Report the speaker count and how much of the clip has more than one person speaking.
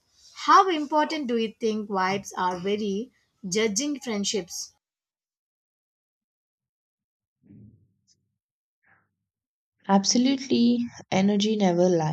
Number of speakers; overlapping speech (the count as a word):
two, no overlap